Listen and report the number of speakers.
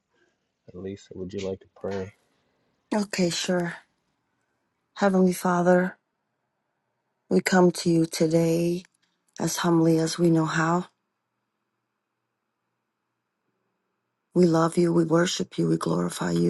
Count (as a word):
two